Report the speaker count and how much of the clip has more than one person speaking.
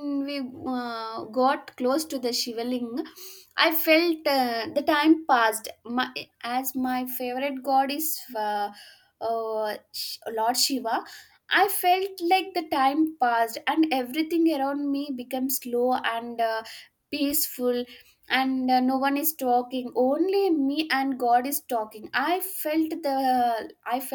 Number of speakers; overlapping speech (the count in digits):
1, no overlap